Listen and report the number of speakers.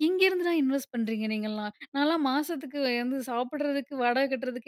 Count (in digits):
1